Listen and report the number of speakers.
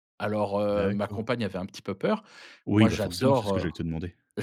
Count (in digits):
2